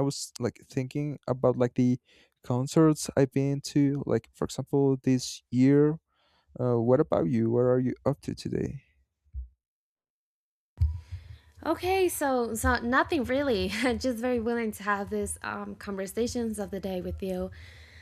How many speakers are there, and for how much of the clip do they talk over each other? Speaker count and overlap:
two, no overlap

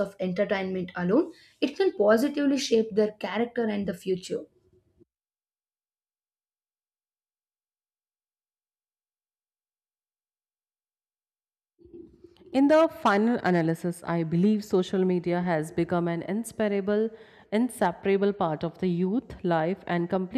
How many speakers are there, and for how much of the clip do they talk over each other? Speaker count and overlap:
two, no overlap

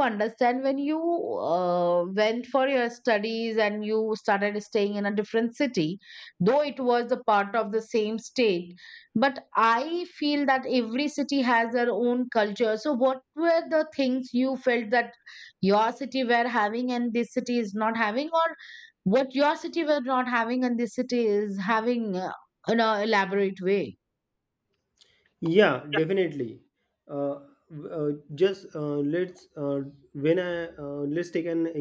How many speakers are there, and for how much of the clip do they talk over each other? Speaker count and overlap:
two, no overlap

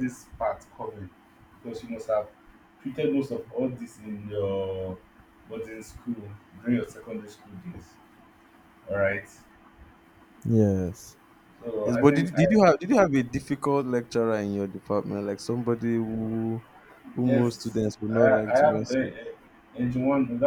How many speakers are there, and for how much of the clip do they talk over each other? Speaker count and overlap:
two, about 11%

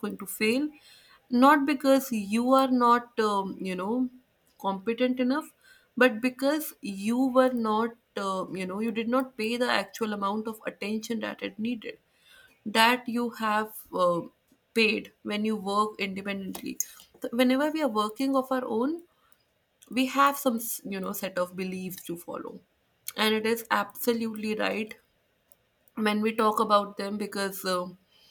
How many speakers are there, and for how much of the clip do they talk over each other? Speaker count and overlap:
one, no overlap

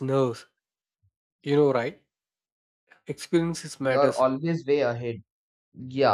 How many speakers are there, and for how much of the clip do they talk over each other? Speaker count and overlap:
two, about 6%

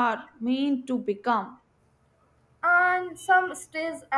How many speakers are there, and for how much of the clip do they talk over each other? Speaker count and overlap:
two, no overlap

